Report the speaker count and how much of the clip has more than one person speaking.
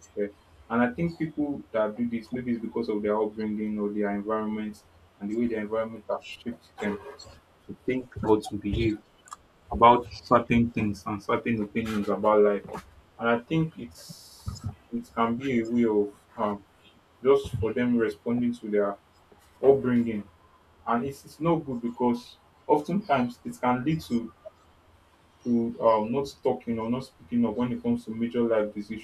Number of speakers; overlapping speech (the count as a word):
one, no overlap